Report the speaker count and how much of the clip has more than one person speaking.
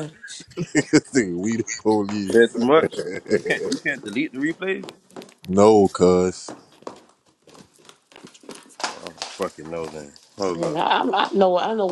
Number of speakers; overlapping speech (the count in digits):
3, about 7%